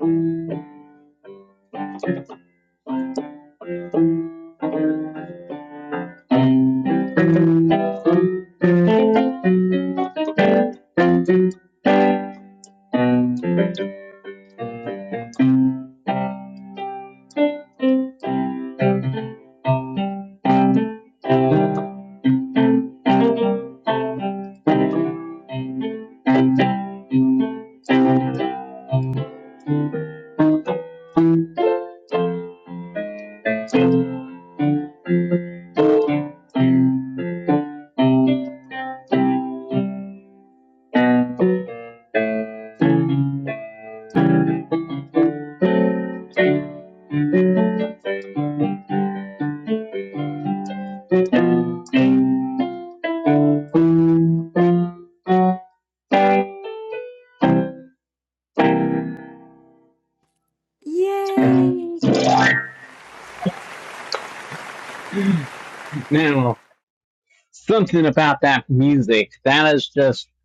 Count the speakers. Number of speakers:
2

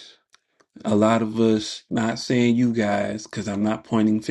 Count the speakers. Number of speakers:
1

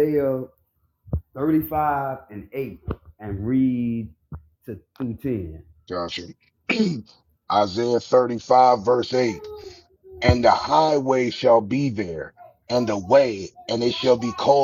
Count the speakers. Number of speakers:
2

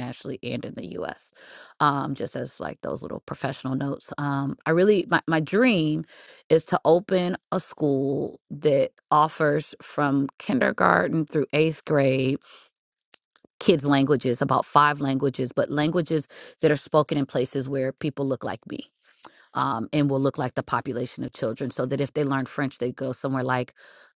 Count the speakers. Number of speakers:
1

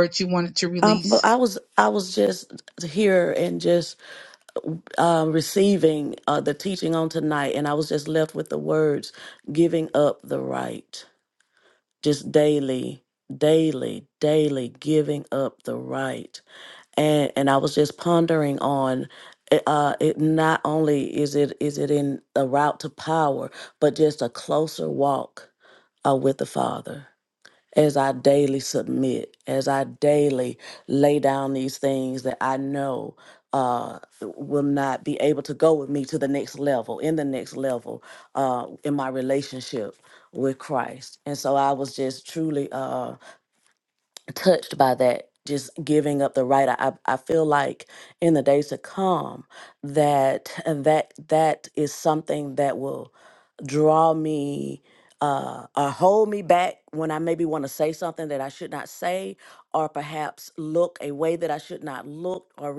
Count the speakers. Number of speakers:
2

